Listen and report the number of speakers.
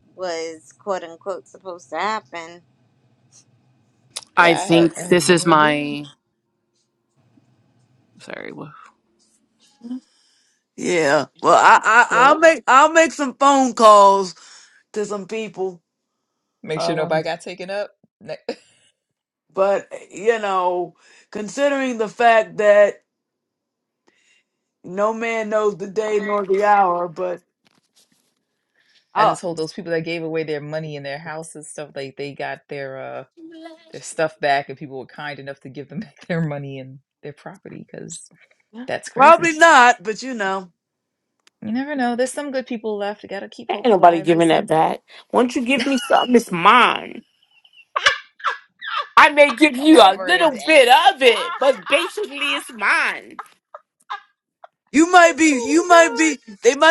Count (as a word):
five